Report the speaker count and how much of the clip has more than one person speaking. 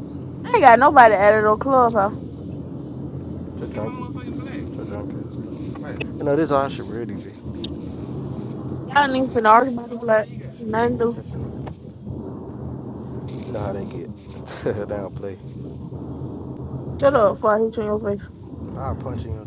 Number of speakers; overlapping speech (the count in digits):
2, no overlap